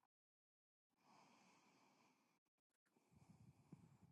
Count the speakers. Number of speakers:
zero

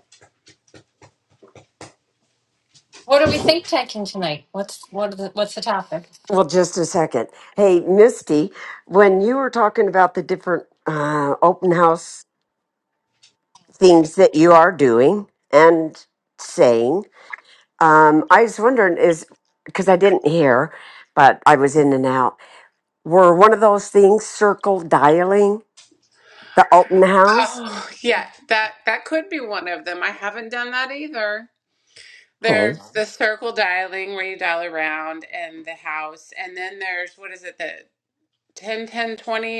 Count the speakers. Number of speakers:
three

